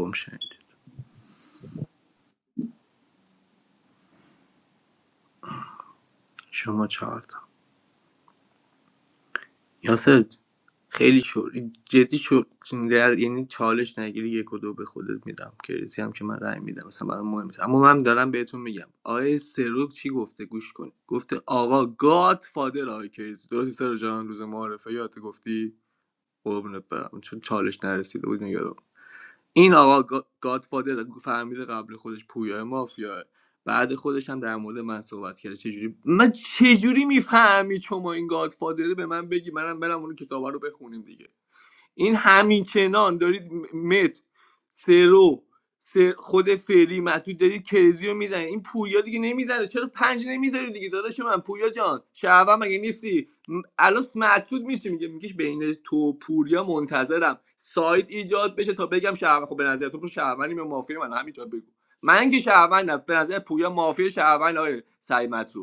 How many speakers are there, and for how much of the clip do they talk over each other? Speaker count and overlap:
1, no overlap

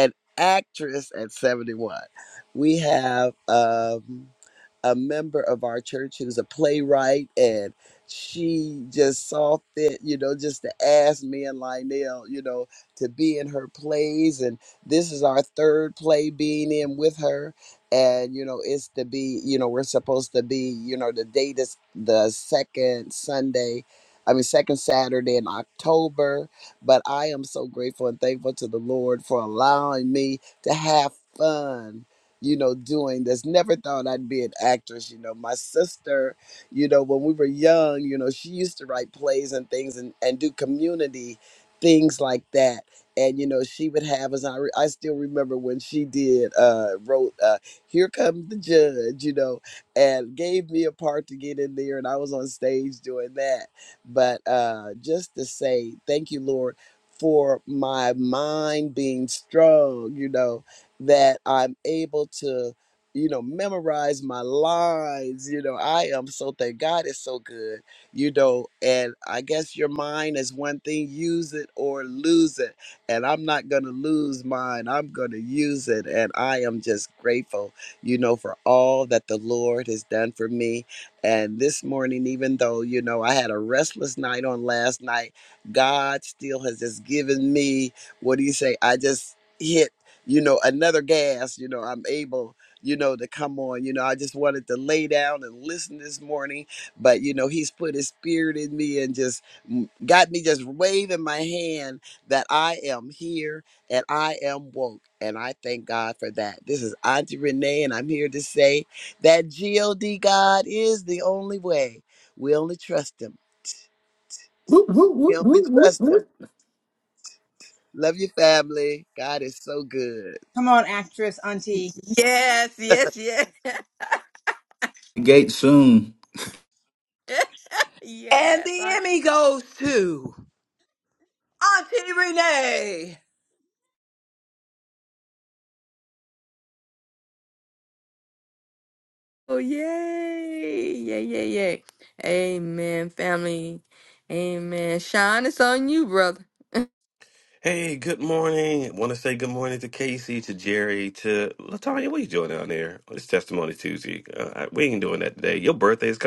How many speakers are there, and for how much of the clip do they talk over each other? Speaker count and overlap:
6, about 1%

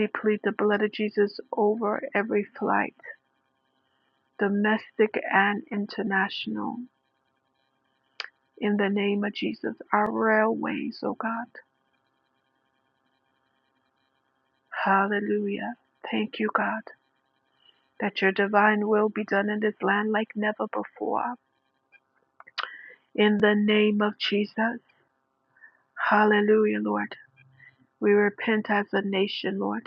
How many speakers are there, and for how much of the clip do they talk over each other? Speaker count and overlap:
1, no overlap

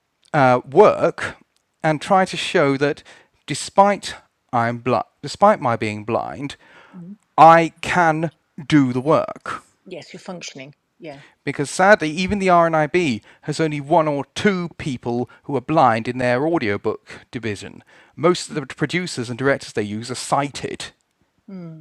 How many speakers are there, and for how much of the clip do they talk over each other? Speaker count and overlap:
2, no overlap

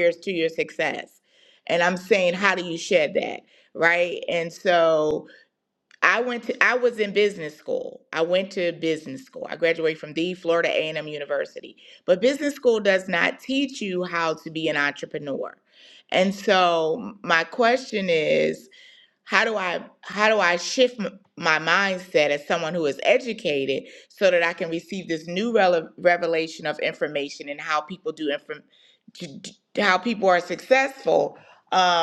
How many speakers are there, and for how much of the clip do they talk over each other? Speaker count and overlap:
1, no overlap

